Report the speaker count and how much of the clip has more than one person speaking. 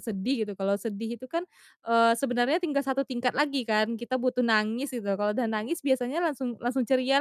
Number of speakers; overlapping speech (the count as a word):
one, no overlap